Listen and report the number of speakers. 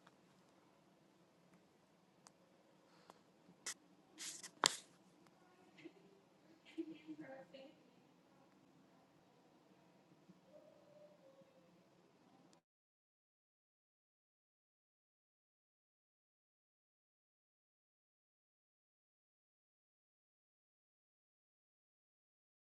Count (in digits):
0